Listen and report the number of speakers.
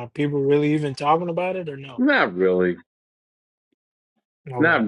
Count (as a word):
two